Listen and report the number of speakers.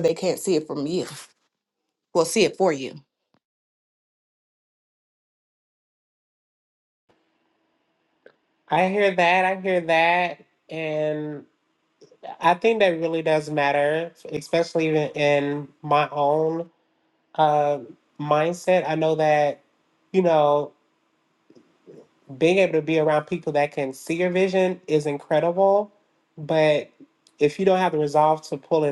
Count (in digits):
2